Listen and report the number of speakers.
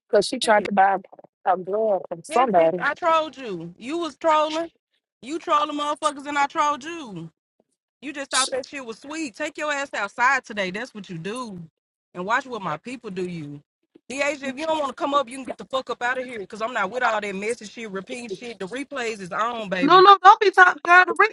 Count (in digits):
3